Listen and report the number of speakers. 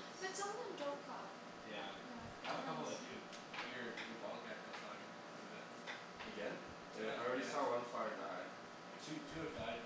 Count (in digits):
3